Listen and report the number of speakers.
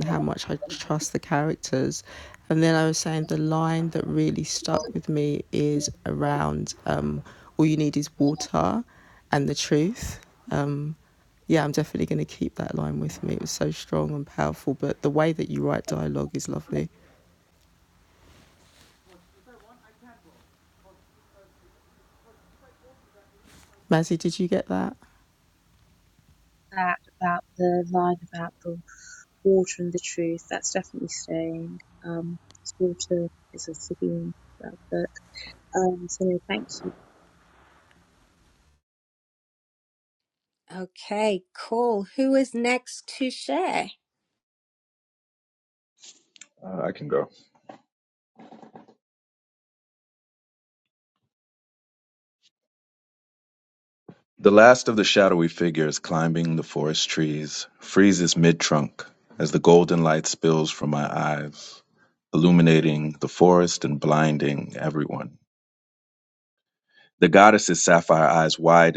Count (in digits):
4